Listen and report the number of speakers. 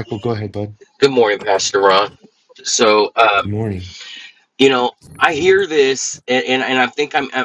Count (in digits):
2